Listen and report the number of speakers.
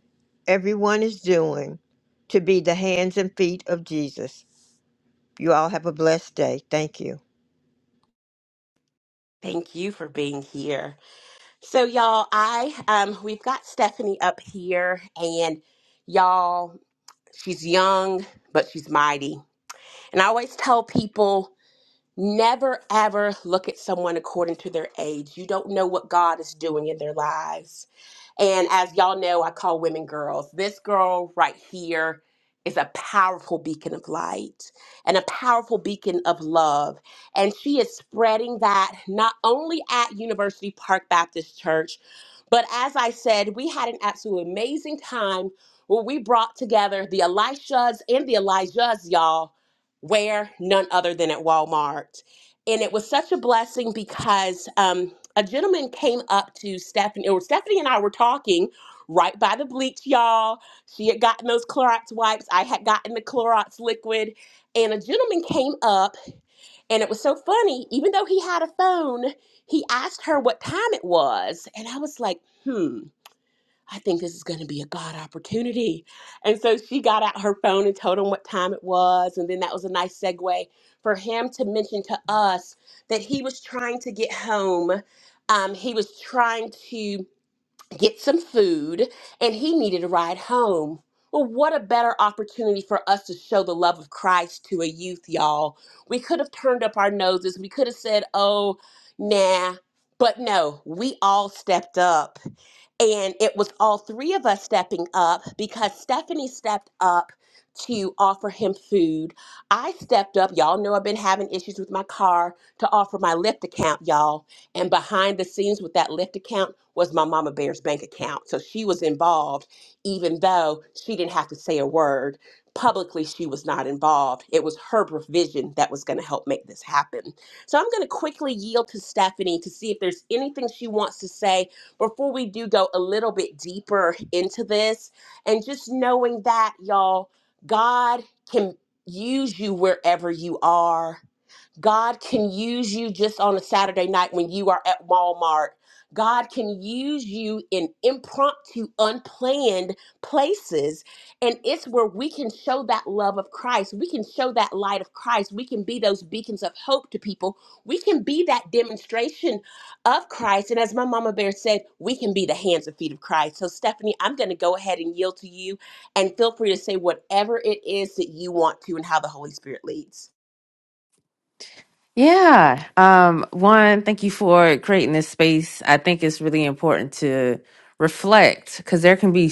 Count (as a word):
three